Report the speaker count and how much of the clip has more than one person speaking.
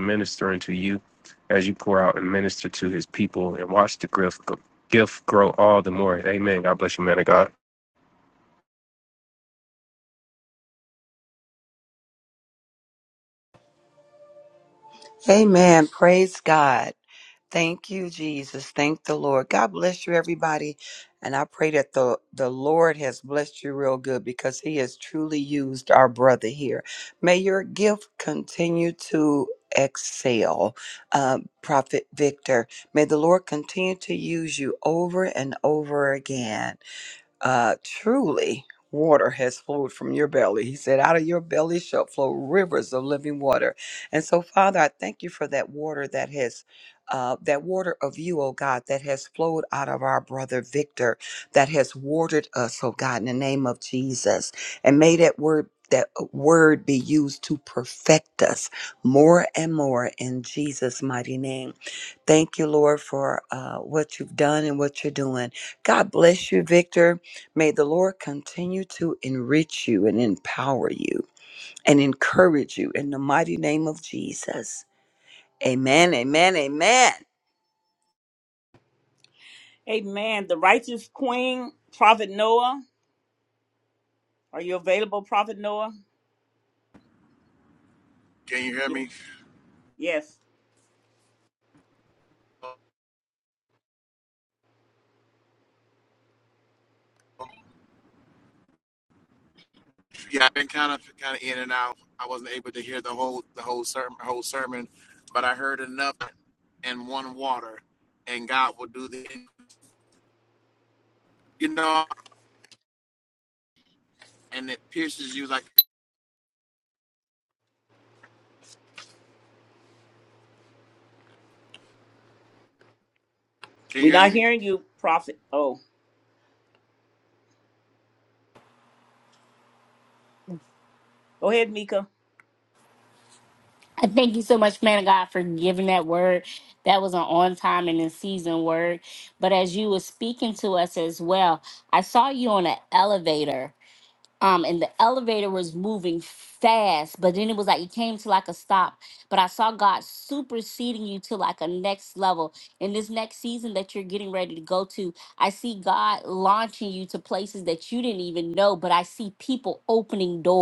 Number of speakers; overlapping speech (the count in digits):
5, under 1%